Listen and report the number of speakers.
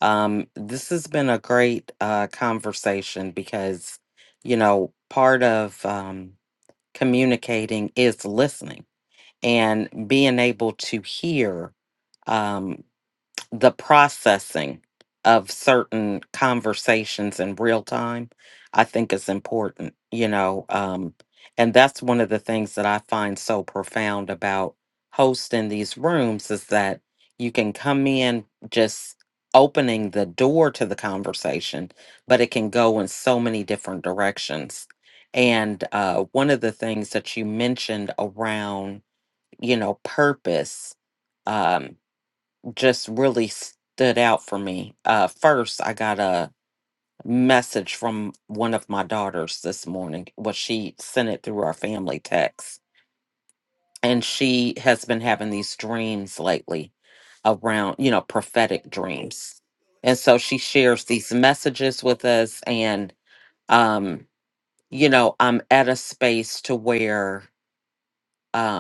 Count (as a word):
one